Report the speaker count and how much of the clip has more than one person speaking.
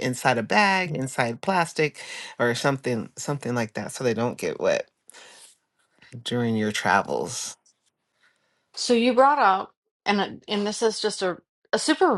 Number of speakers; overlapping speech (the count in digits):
2, no overlap